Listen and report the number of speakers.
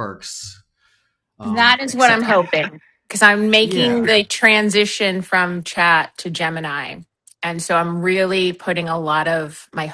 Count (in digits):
2